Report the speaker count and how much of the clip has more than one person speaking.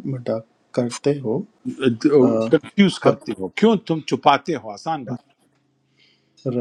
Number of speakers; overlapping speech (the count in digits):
2, about 4%